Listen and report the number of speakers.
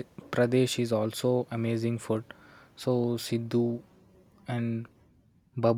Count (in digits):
1